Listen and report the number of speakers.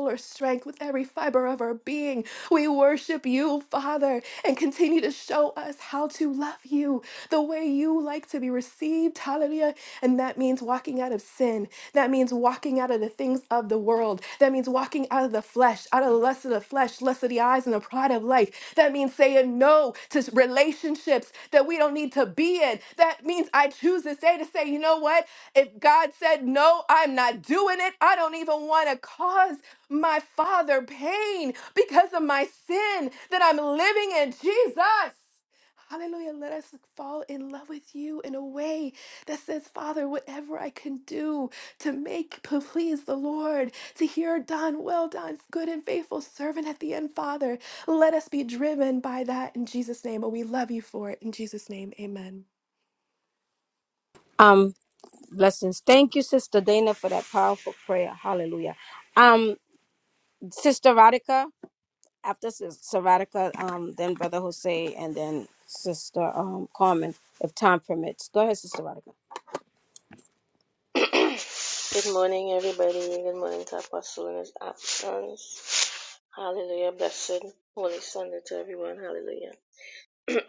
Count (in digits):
3